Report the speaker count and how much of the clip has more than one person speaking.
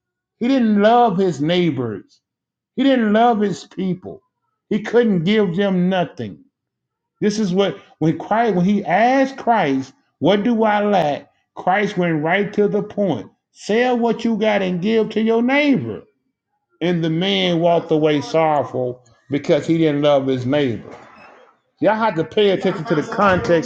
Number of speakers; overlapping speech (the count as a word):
one, no overlap